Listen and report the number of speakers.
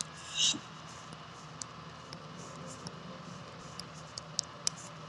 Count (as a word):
zero